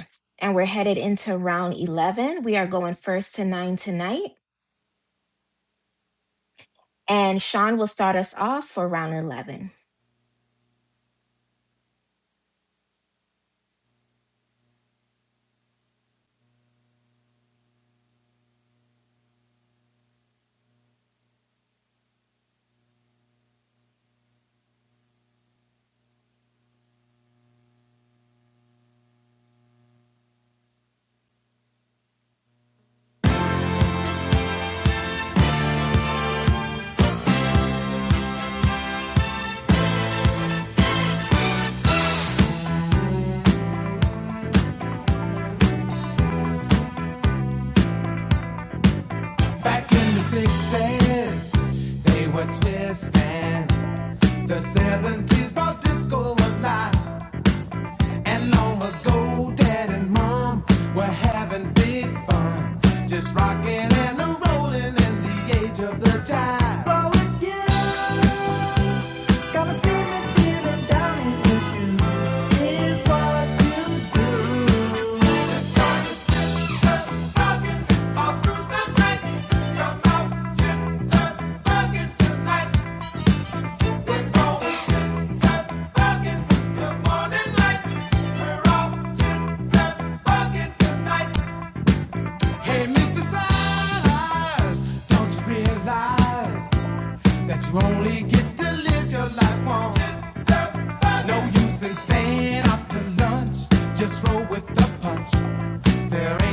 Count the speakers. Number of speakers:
2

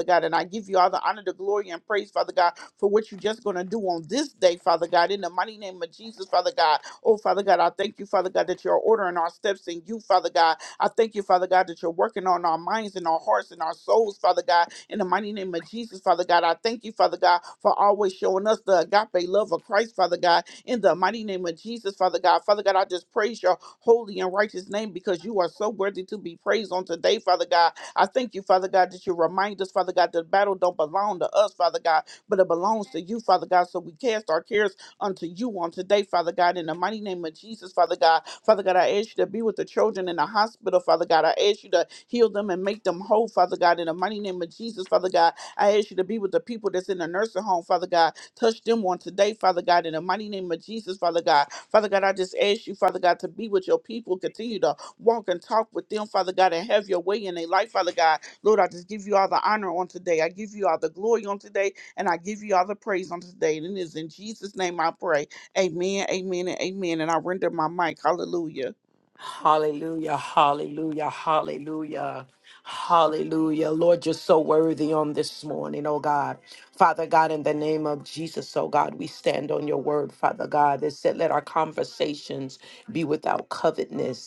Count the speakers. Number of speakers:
2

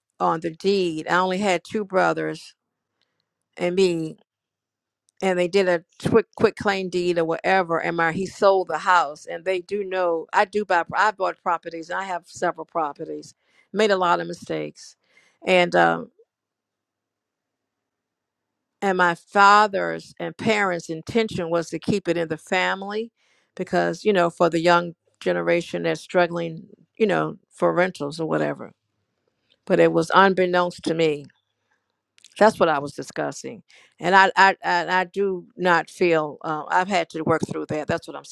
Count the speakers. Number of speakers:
1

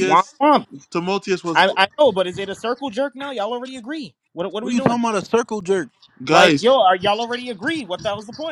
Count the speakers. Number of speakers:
3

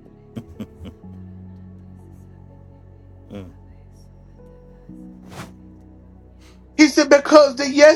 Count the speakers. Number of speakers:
1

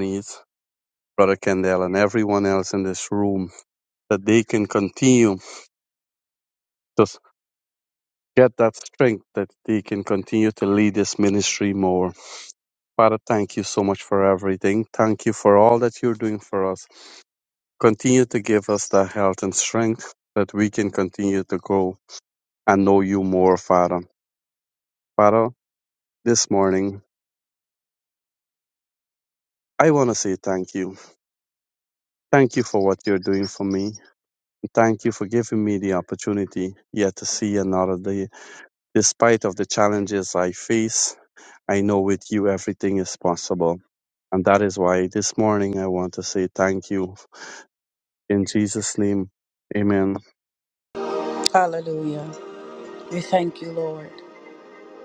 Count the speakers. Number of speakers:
2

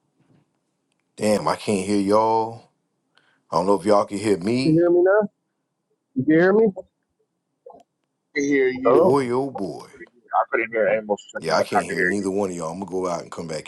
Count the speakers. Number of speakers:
3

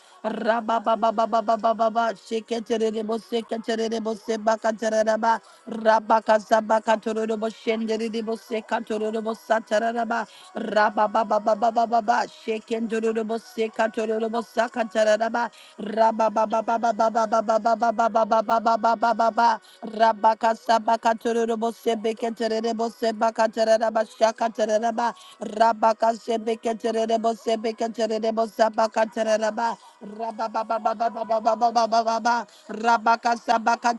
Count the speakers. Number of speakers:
1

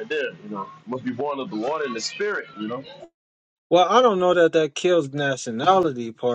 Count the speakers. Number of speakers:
2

